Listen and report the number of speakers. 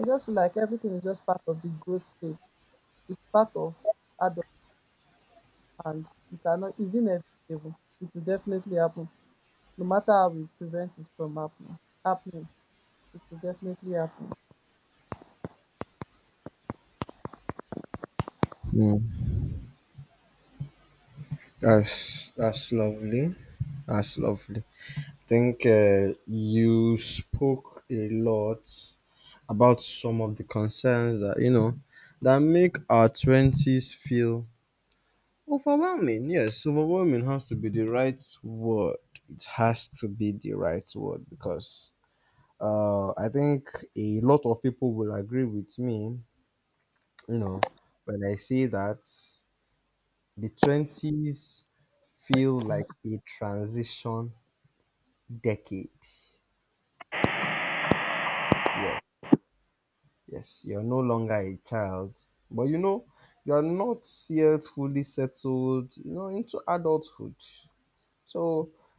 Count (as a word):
two